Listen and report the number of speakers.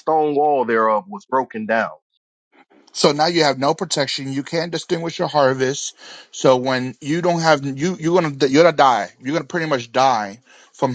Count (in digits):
2